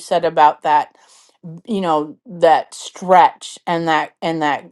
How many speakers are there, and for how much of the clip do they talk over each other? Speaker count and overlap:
1, no overlap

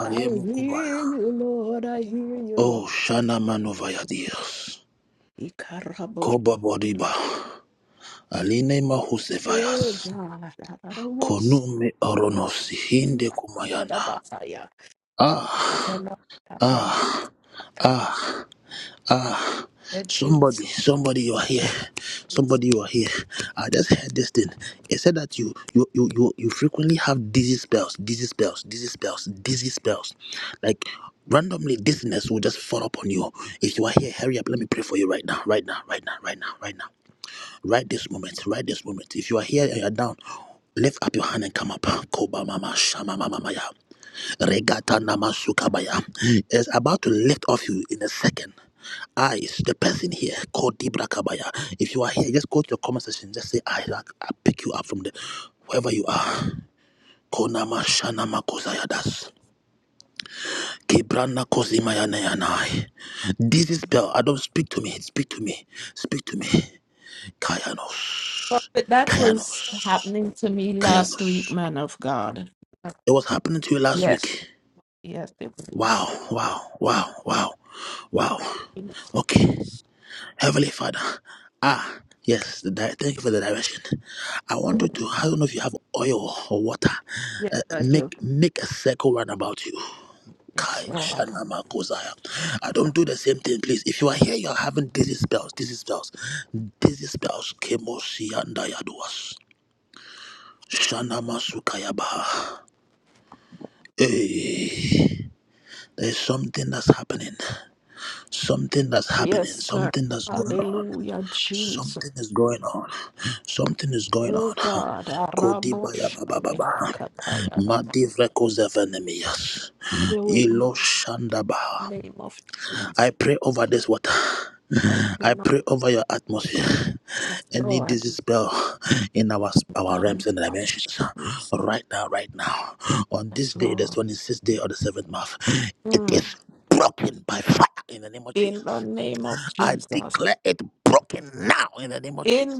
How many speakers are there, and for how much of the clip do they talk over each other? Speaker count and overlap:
2, about 11%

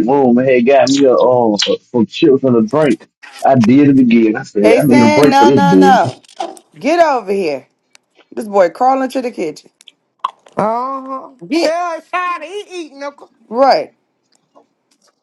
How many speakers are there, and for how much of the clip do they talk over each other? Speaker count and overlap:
3, about 11%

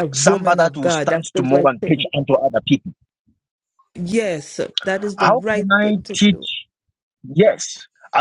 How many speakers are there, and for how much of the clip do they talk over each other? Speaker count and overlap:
2, about 38%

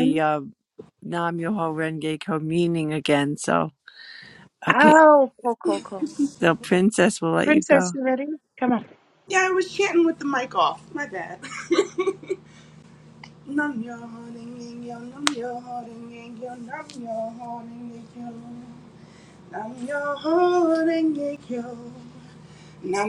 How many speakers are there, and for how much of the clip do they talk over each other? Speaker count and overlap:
3, about 4%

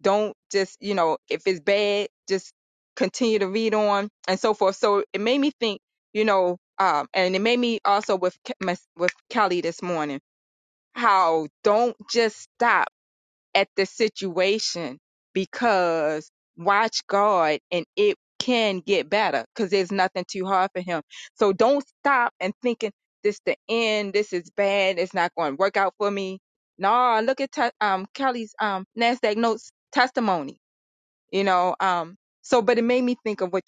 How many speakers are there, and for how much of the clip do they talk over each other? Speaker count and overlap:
1, no overlap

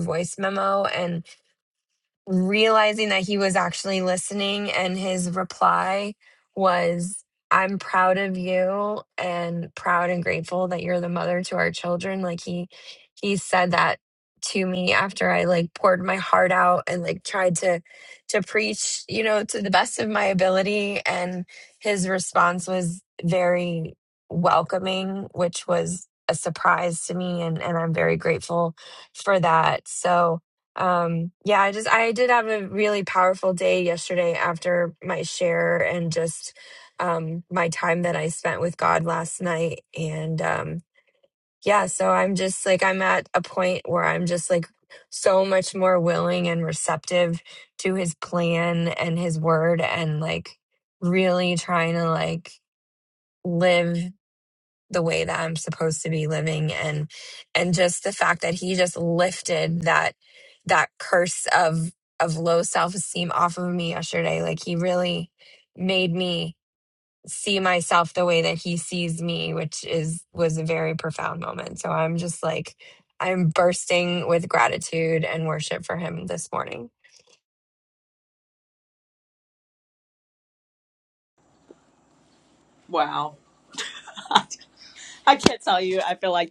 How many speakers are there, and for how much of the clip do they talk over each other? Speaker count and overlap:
2, no overlap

